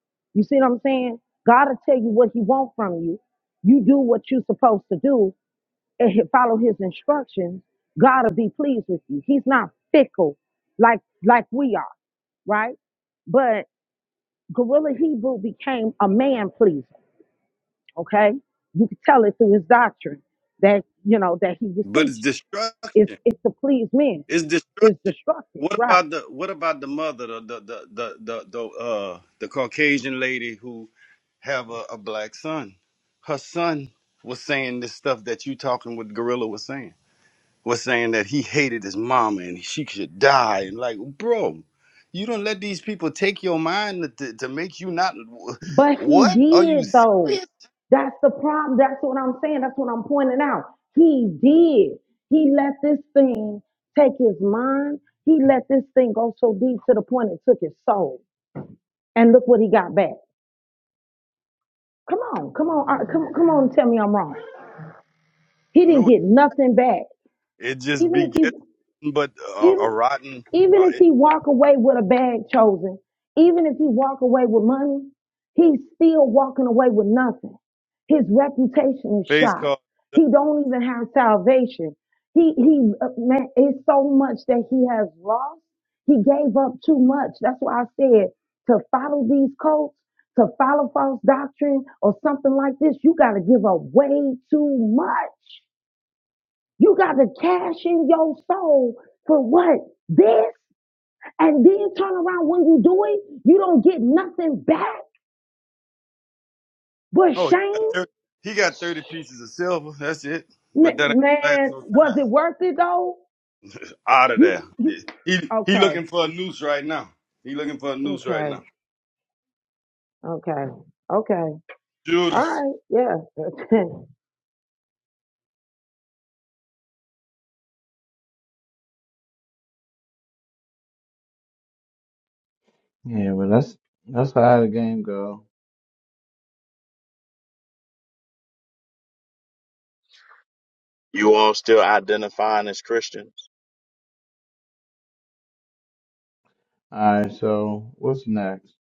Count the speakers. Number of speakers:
4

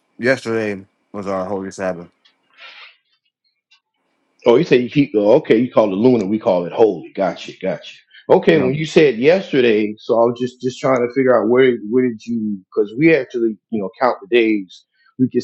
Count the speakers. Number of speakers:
2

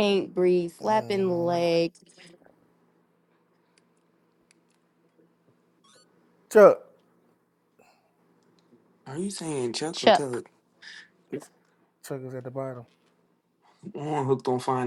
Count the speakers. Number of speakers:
3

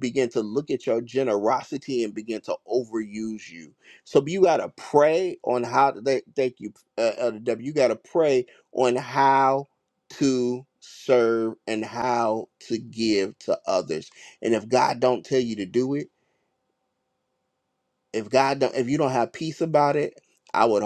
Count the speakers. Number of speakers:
1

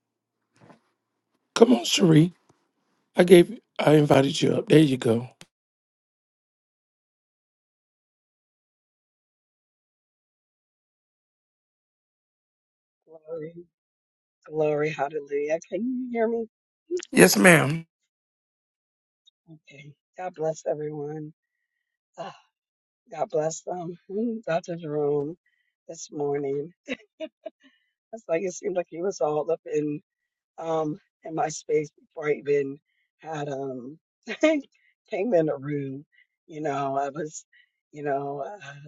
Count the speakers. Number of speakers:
2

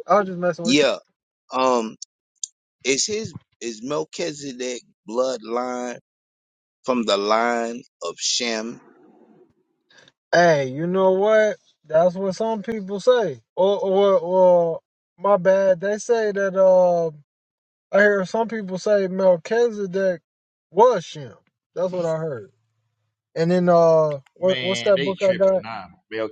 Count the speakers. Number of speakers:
3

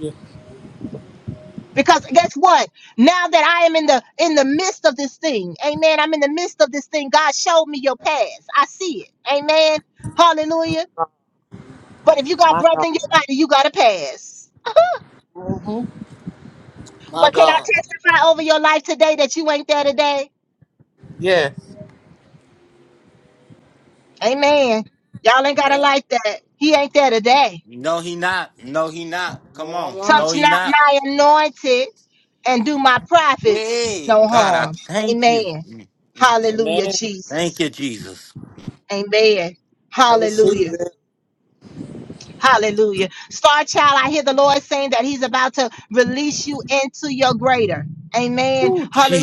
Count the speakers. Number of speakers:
3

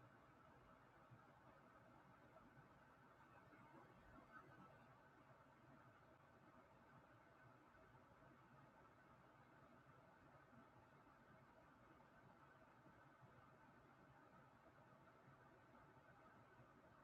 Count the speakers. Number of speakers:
0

